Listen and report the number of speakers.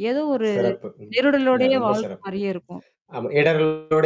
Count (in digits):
2